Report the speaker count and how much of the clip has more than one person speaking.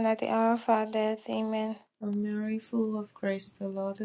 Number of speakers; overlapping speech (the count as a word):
two, no overlap